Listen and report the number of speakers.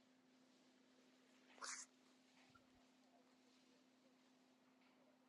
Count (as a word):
zero